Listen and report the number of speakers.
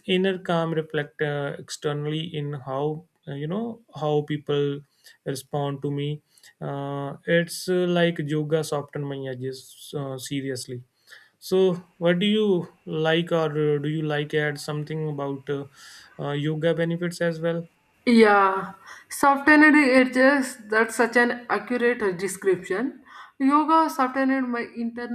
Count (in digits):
2